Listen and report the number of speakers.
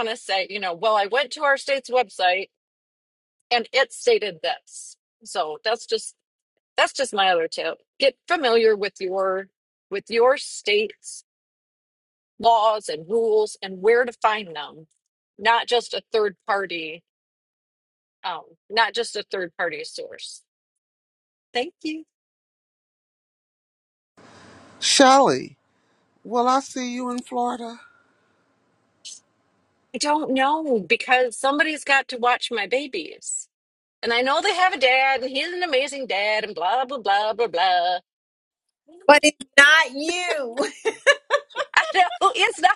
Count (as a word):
three